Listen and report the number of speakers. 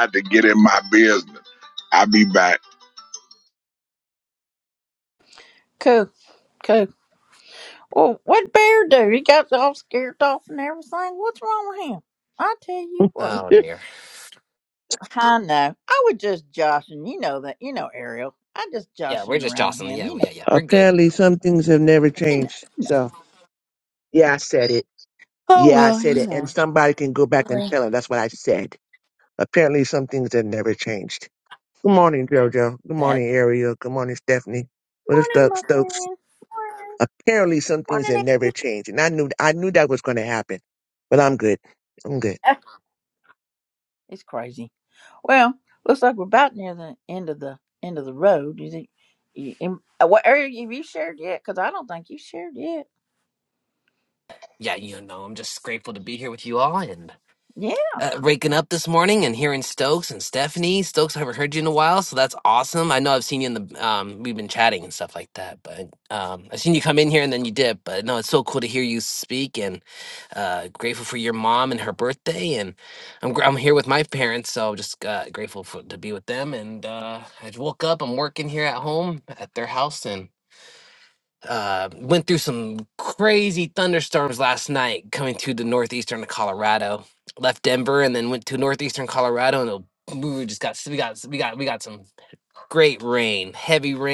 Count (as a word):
four